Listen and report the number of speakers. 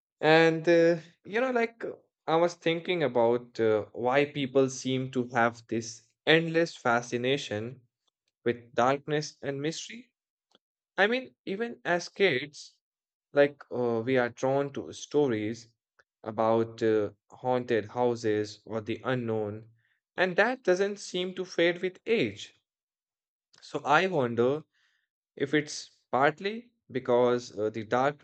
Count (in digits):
1